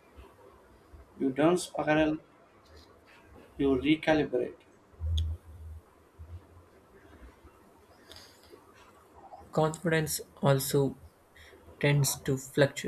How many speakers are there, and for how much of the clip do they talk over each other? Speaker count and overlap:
2, no overlap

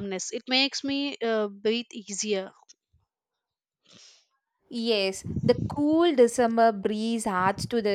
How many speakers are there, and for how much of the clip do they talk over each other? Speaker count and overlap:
2, no overlap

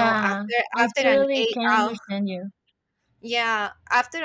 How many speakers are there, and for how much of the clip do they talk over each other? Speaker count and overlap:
2, about 48%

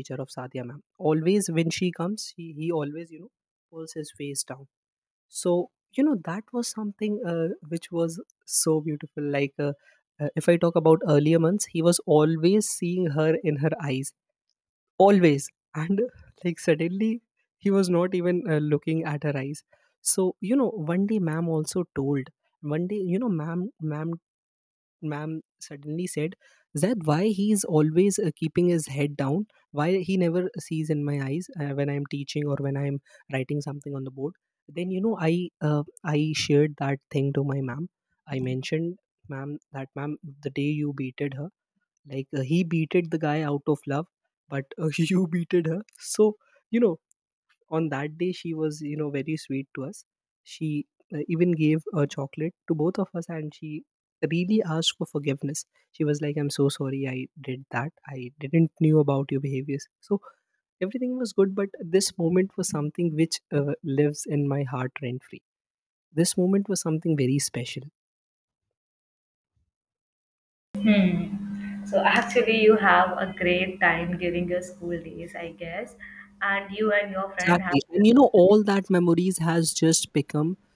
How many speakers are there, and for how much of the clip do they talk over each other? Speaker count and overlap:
2, under 1%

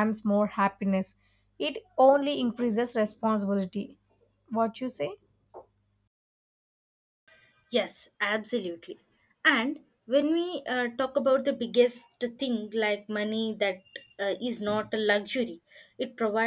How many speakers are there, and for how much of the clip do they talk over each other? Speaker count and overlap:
2, no overlap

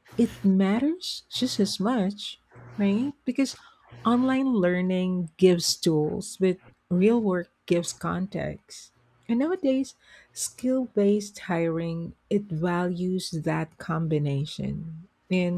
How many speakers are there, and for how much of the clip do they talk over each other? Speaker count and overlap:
1, no overlap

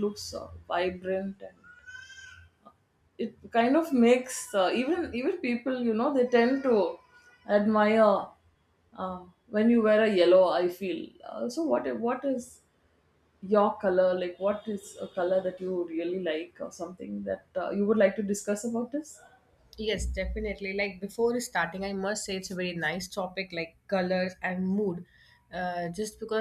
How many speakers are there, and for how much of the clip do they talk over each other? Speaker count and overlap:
2, no overlap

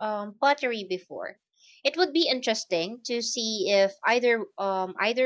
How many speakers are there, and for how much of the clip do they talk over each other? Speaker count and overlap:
1, no overlap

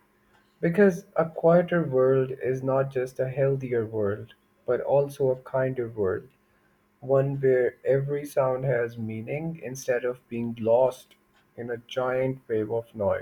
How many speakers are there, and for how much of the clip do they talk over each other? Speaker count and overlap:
1, no overlap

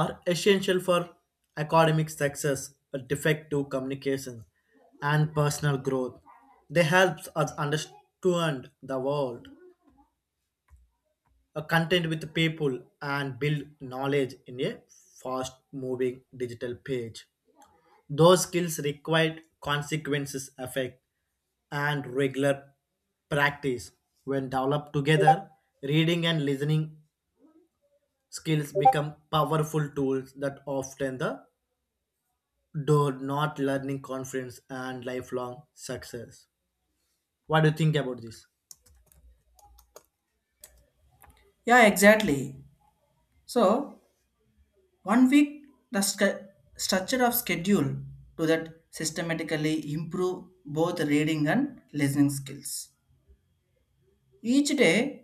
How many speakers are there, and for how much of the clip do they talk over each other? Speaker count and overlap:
2, no overlap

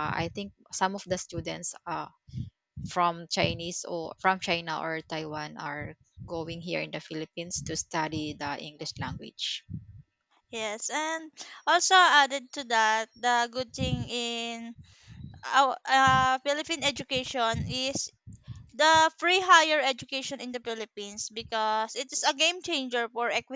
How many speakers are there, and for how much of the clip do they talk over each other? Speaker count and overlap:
2, no overlap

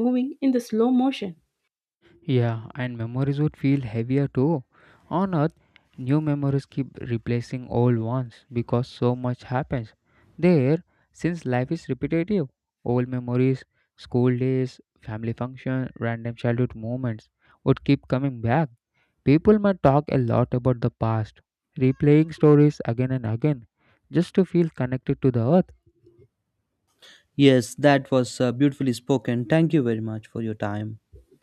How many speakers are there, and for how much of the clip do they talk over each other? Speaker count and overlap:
3, no overlap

